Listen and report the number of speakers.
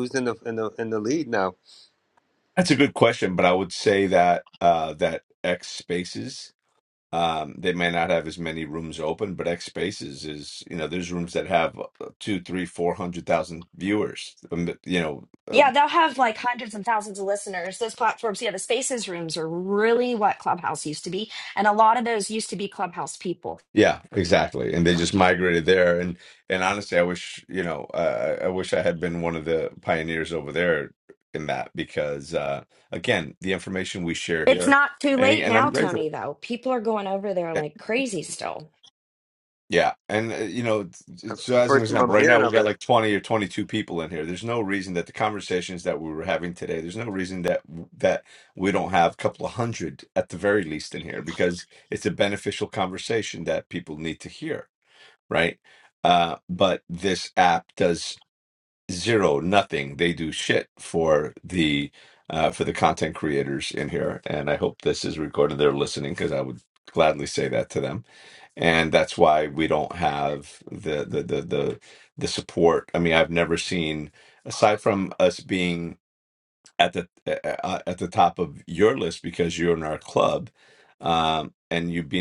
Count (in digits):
3